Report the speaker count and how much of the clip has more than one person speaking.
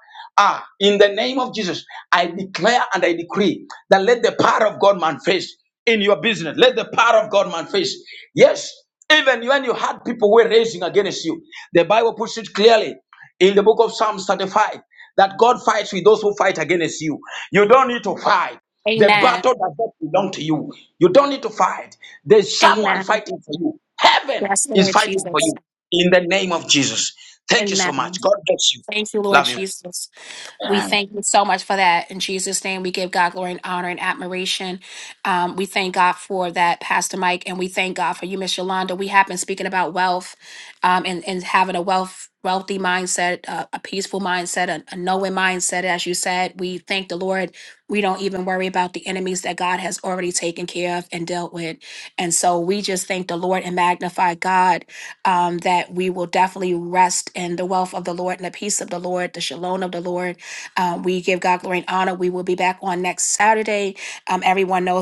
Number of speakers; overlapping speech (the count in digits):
2, about 5%